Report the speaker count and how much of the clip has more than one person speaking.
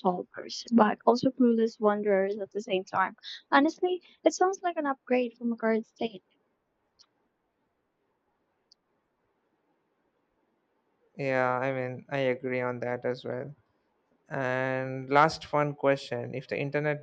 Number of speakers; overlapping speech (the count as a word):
two, no overlap